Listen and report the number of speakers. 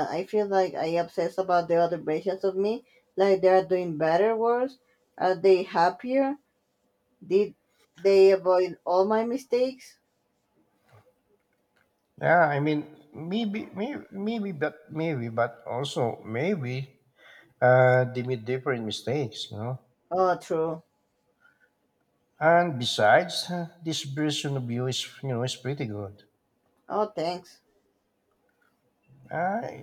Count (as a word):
two